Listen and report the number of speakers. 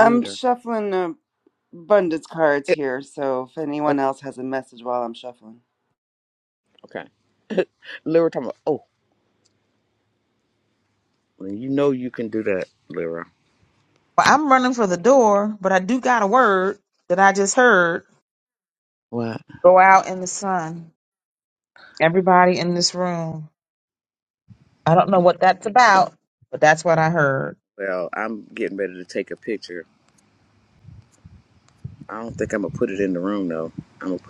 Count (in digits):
3